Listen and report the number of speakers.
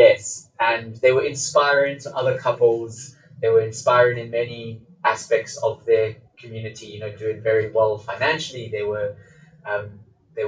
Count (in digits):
1